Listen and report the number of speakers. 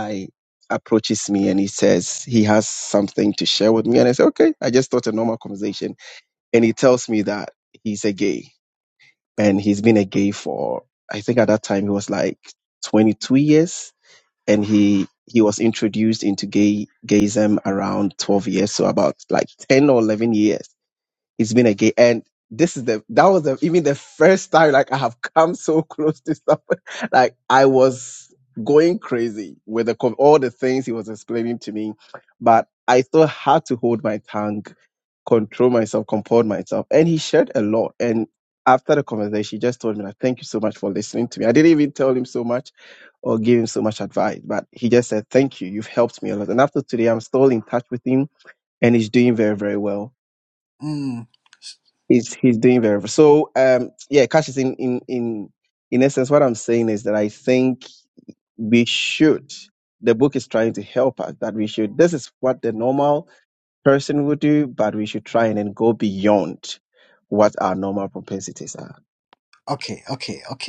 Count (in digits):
2